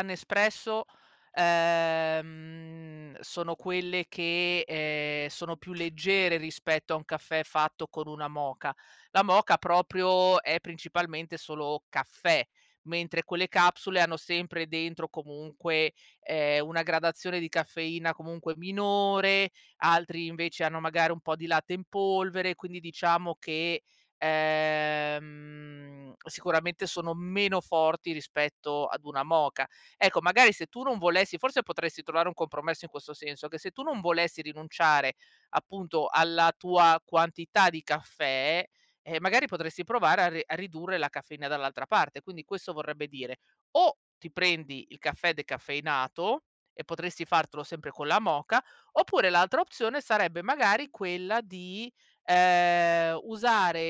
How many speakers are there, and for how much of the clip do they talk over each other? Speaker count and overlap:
1, no overlap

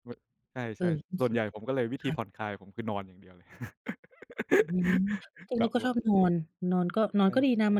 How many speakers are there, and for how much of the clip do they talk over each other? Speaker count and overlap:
2, about 15%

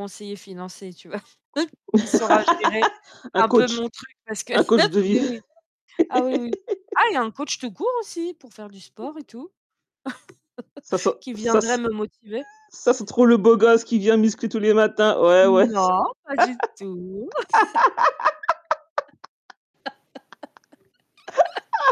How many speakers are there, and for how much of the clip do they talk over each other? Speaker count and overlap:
2, about 7%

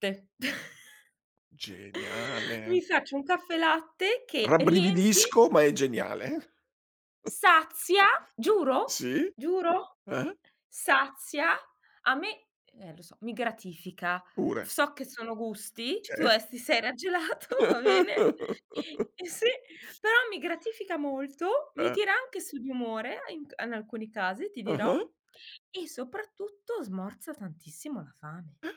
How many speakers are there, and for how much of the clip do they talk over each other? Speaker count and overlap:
2, about 6%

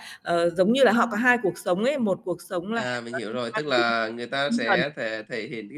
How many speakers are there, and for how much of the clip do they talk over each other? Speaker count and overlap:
2, about 26%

